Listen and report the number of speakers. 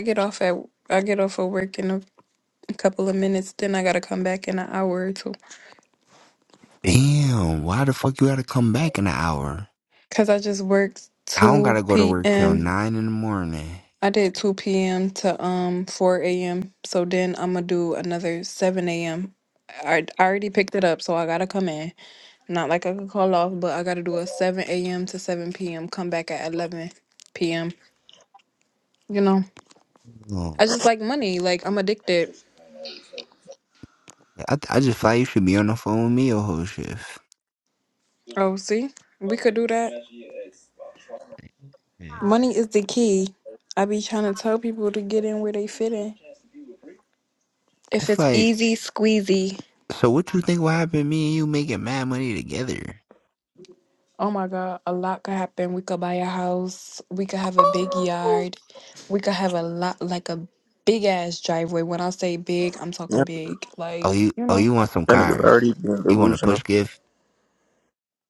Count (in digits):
3